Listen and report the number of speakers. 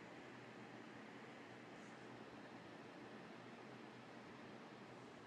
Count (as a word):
zero